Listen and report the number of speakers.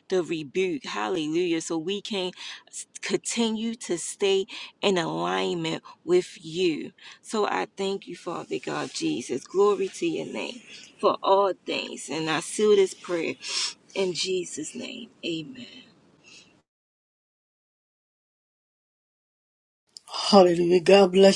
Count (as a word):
two